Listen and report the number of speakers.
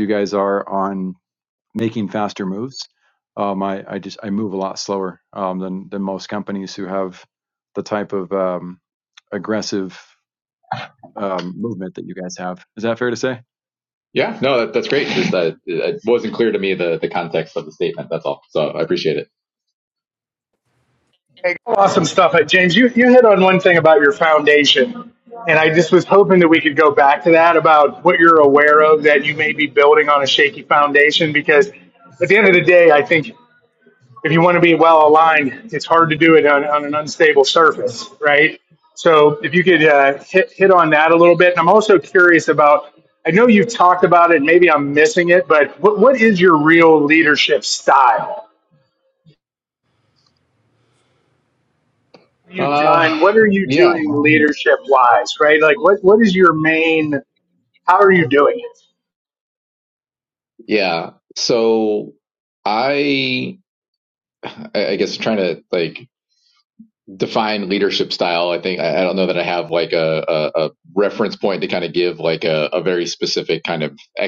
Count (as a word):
three